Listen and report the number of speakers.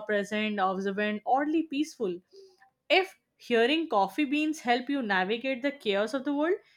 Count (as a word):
one